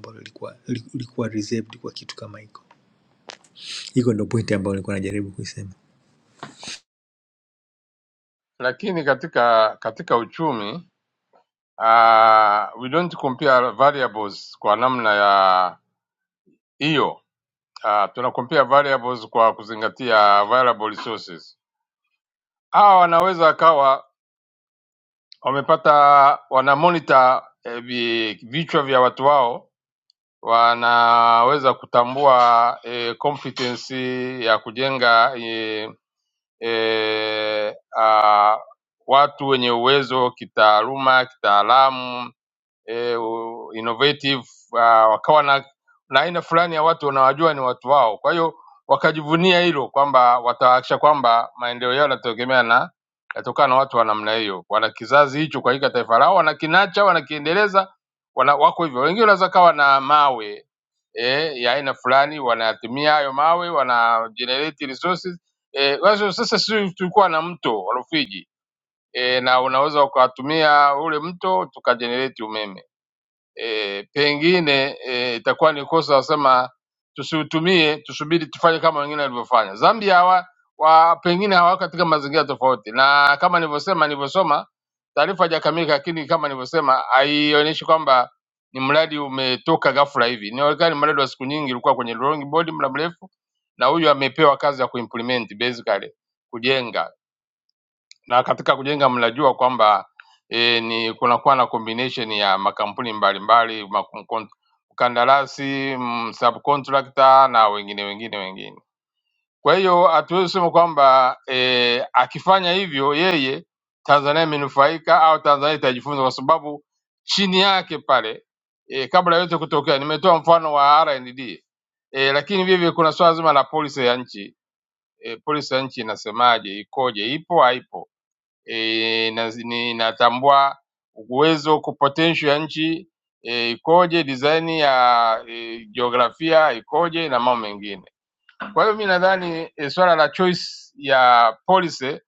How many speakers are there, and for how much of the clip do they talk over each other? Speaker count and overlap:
2, no overlap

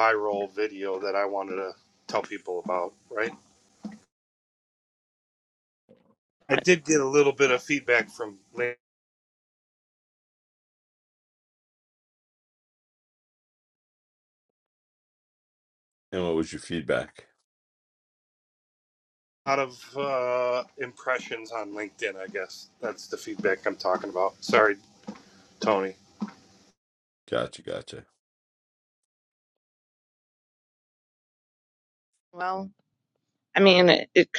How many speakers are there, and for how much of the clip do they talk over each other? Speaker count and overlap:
3, under 1%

